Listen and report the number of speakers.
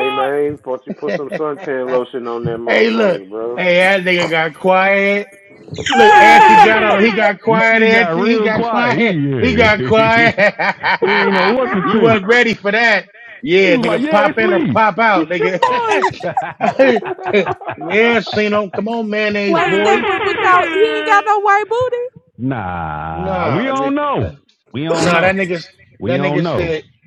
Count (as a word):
four